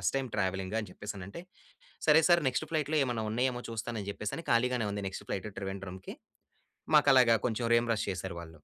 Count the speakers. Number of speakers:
one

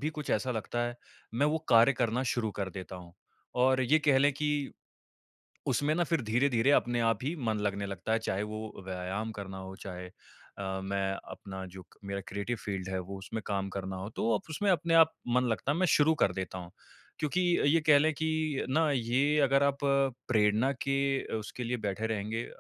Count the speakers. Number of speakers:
one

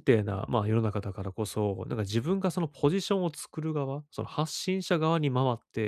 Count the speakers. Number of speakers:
one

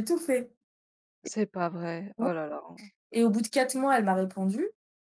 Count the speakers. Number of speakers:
two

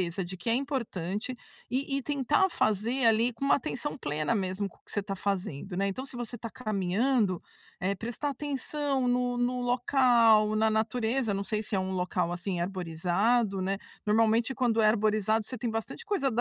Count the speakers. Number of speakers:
one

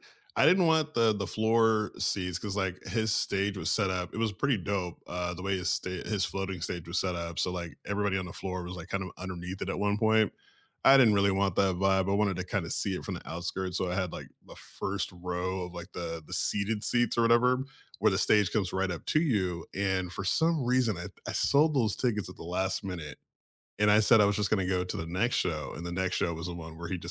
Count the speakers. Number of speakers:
one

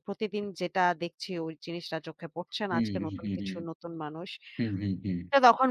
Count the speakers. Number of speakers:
two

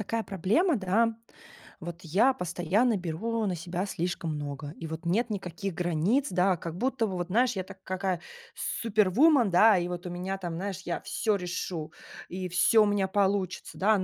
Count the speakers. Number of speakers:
one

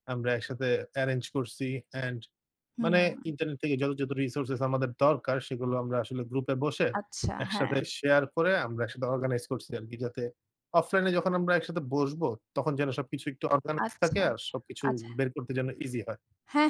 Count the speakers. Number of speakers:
two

